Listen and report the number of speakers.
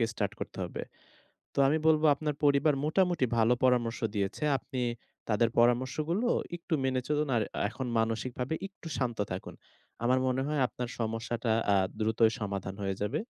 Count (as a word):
one